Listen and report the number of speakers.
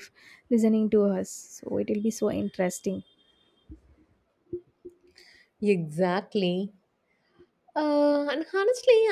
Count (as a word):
two